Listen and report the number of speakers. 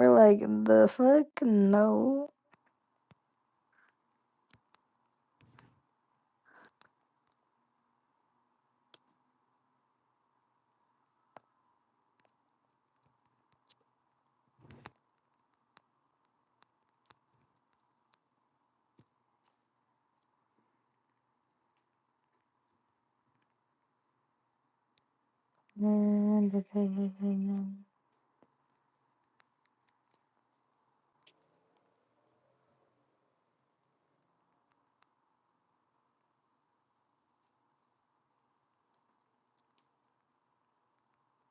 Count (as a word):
one